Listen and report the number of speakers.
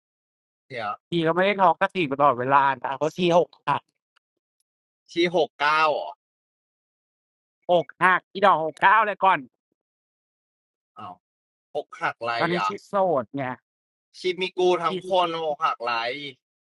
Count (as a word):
two